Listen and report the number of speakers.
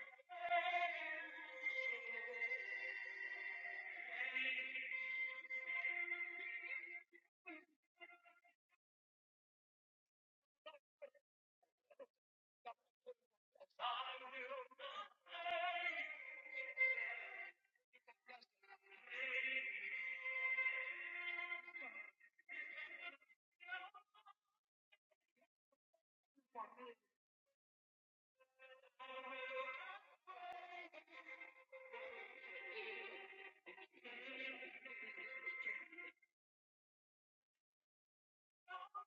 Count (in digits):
0